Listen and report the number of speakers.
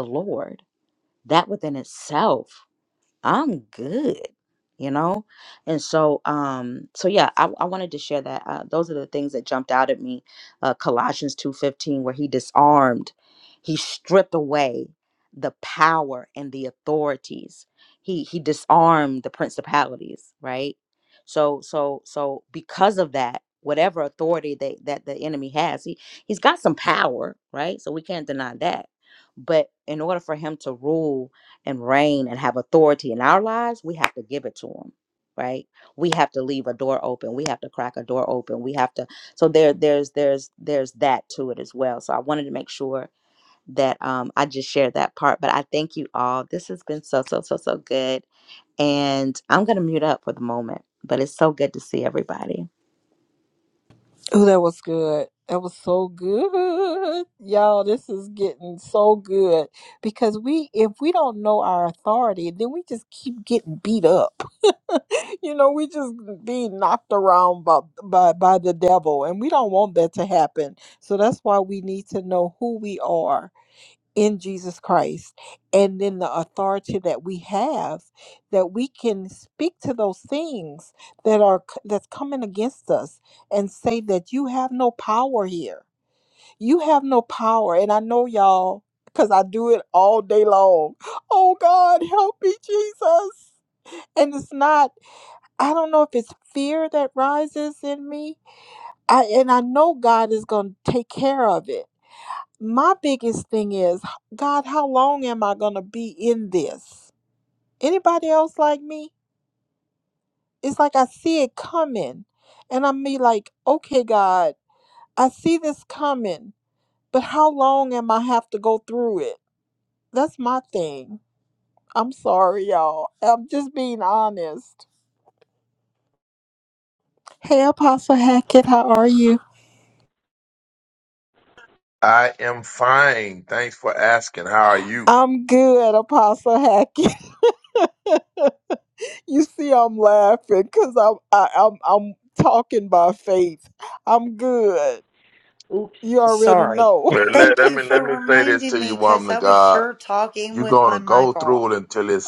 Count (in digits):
4